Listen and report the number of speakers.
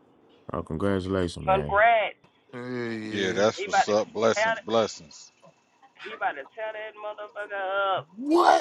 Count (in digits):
4